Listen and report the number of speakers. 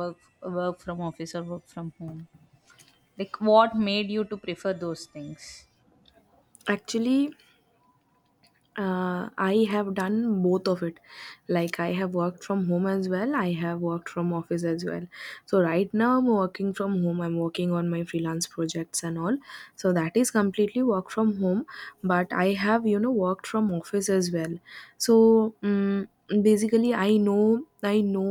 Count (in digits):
2